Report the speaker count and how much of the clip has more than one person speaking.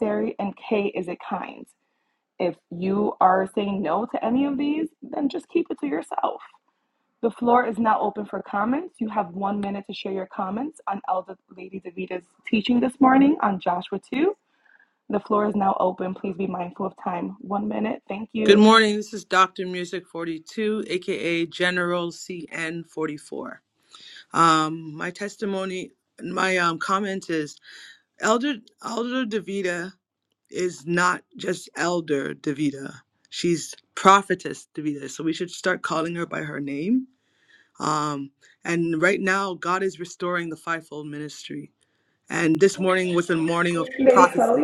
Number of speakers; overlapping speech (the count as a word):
two, about 2%